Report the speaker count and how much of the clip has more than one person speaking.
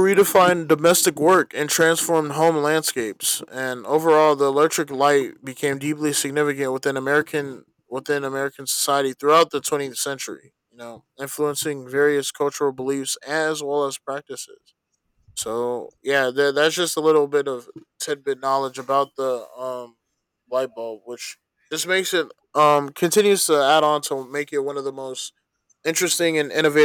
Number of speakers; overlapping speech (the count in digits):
1, no overlap